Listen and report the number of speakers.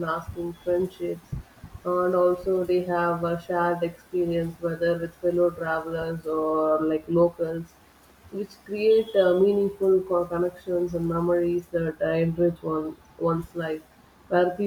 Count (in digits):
1